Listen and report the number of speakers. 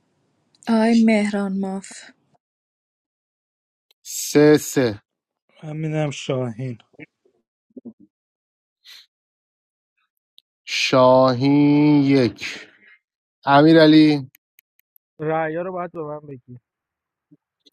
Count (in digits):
4